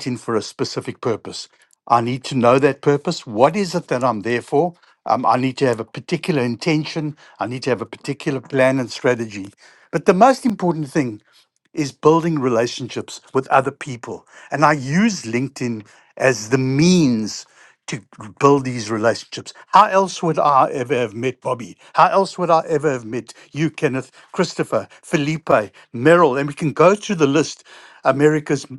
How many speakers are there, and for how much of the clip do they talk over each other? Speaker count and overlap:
one, no overlap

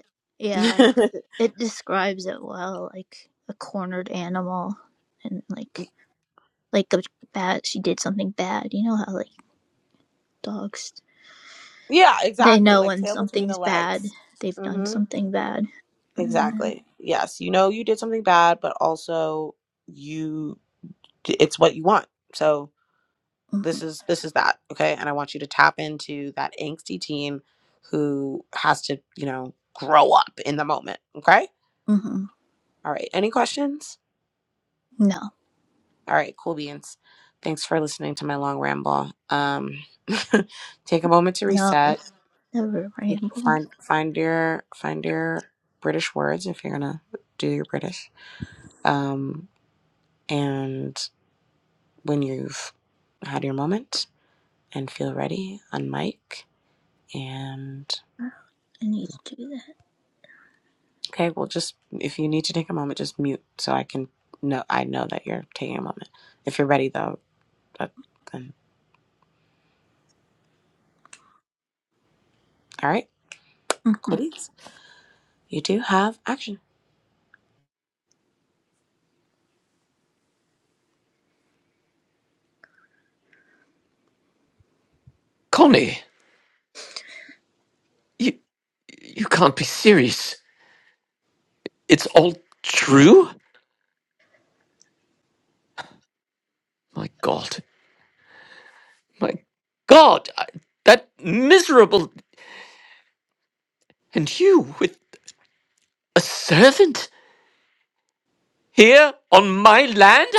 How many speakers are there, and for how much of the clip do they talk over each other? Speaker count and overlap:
three, about 3%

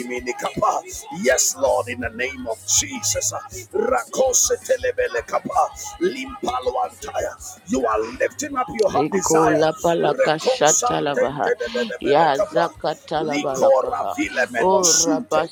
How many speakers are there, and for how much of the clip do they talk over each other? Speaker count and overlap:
two, about 22%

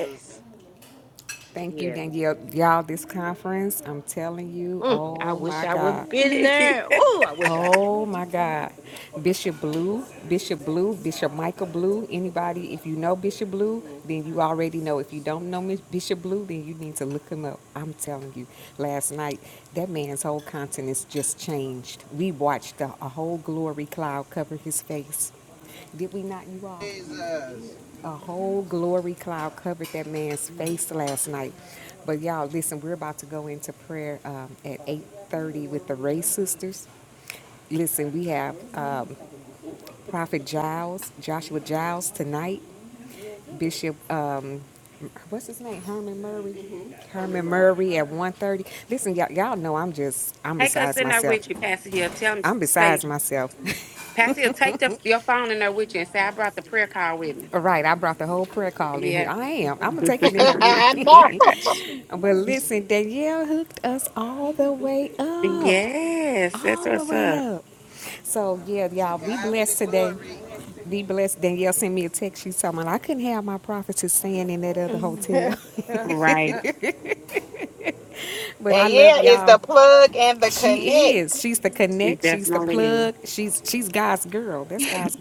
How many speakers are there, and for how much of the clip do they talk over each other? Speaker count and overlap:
five, about 11%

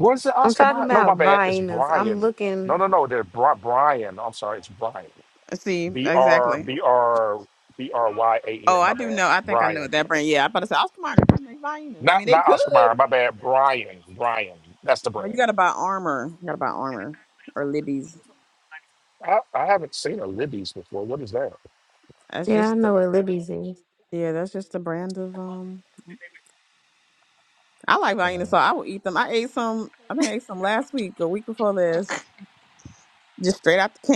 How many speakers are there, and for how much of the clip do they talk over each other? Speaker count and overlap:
three, about 15%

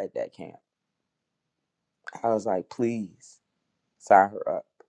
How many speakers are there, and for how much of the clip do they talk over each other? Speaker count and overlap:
one, no overlap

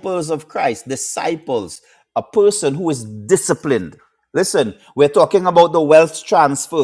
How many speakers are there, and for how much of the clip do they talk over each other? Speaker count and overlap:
one, no overlap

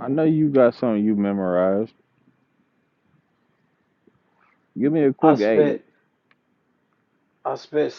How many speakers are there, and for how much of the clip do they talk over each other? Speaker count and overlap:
two, about 7%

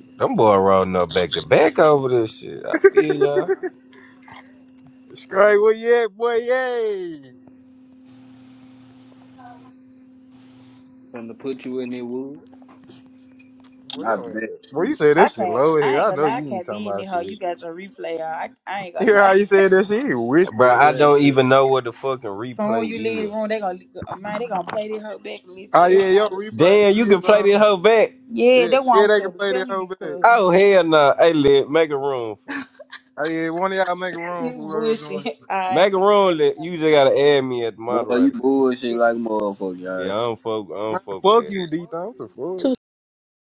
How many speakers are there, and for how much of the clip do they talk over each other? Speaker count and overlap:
five, about 25%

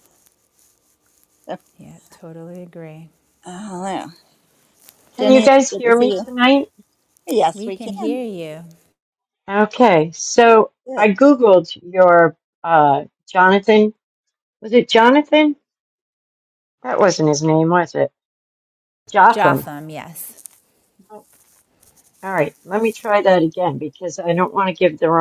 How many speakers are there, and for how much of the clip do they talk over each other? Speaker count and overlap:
three, about 11%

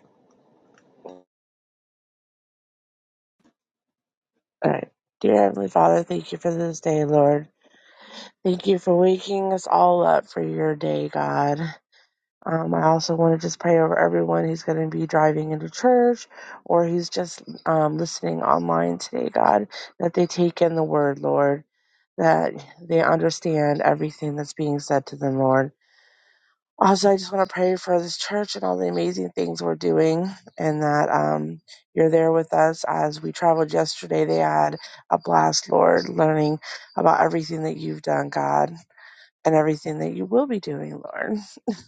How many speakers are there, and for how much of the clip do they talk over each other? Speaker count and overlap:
one, no overlap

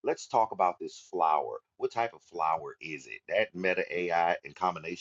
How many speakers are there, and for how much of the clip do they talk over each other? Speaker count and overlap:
one, no overlap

